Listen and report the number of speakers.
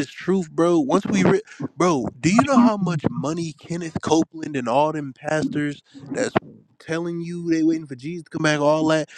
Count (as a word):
one